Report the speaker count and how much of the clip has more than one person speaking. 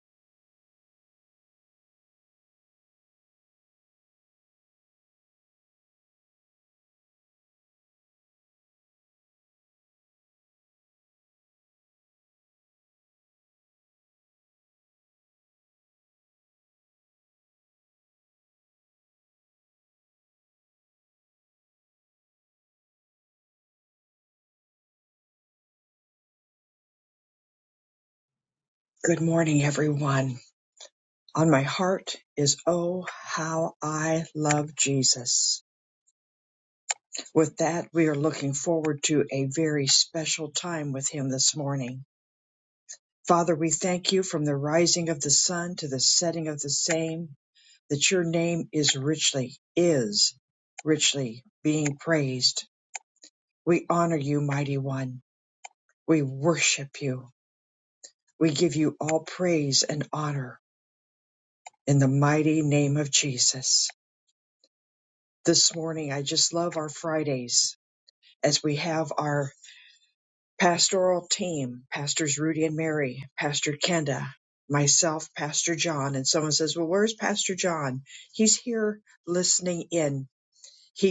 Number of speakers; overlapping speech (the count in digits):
1, no overlap